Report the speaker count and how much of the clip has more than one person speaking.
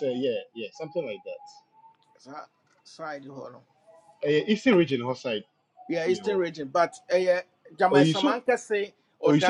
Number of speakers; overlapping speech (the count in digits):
2, about 12%